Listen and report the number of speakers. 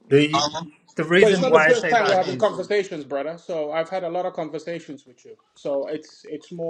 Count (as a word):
two